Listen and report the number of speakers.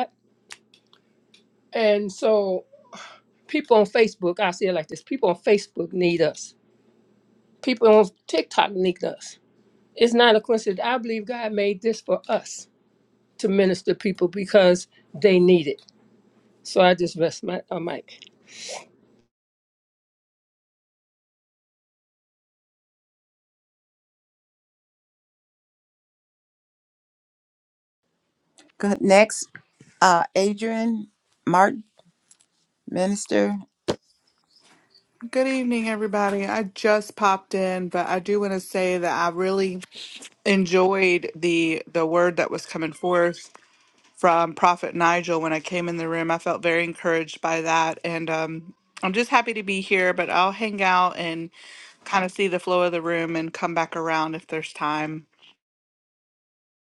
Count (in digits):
3